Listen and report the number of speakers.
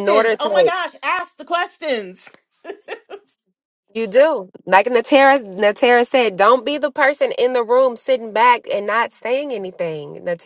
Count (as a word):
two